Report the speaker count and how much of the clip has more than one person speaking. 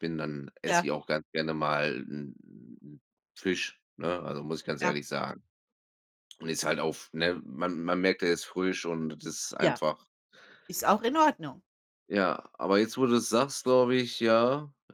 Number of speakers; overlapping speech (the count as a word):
two, about 3%